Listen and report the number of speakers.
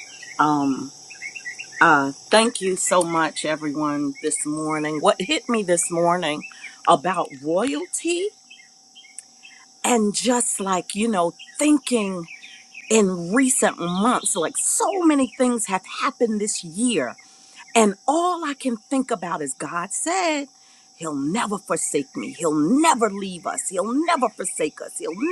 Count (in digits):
1